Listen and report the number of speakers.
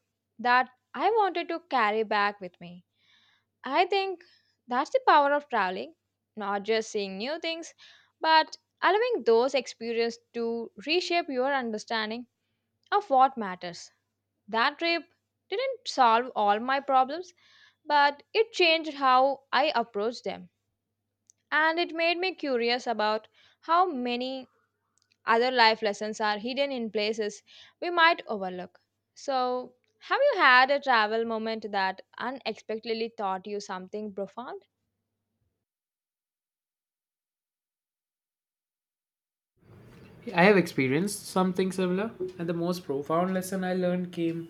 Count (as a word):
two